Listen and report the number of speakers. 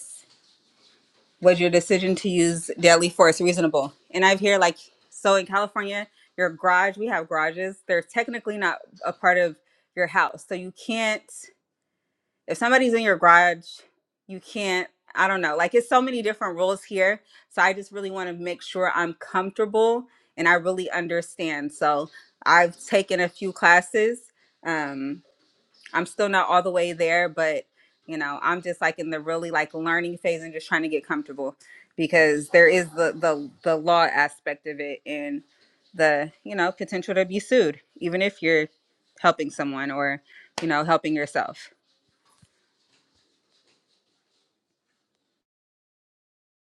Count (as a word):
one